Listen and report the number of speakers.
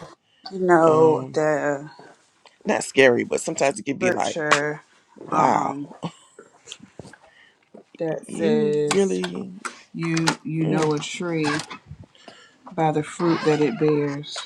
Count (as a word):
two